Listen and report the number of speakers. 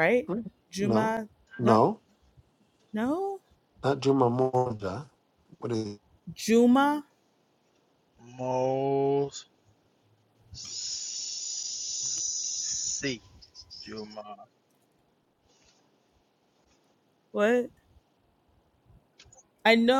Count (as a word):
three